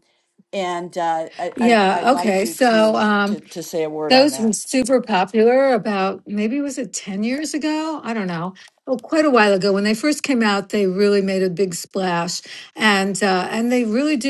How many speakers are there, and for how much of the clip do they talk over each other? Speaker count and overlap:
2, about 16%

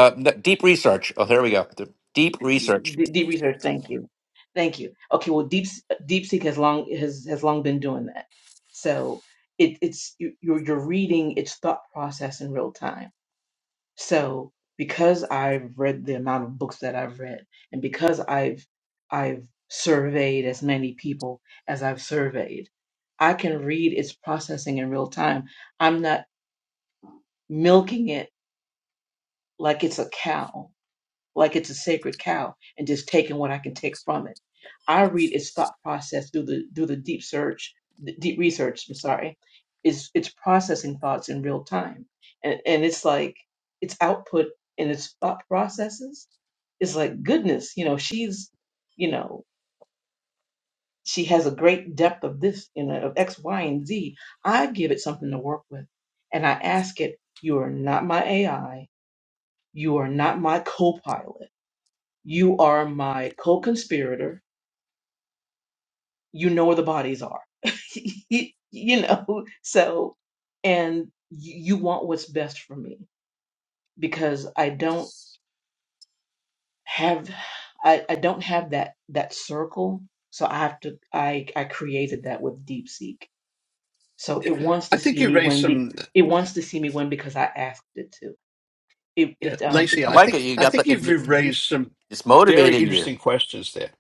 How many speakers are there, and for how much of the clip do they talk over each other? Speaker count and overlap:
3, about 4%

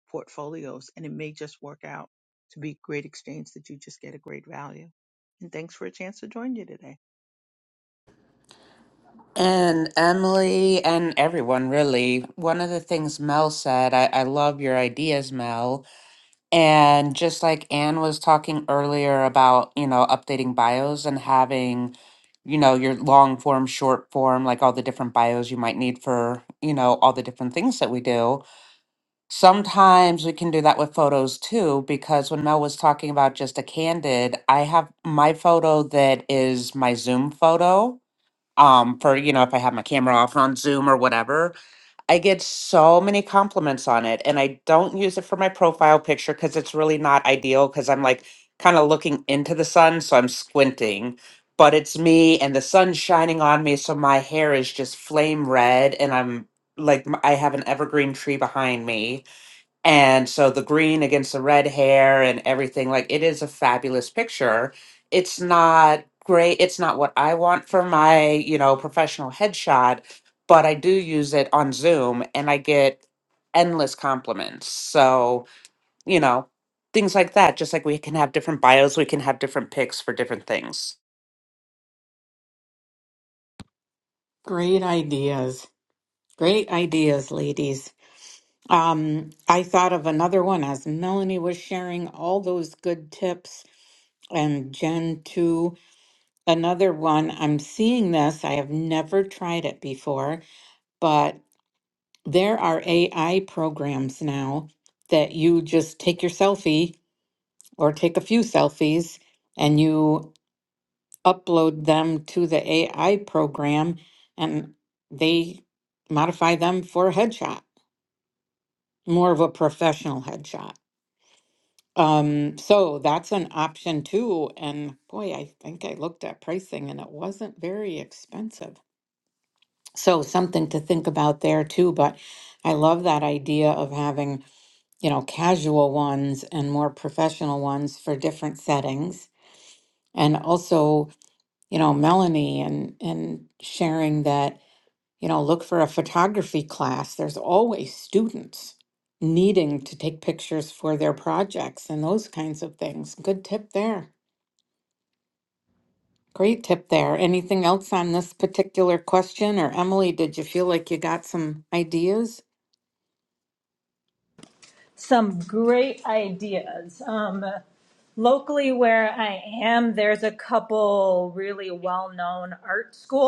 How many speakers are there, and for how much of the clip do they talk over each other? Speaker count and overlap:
4, no overlap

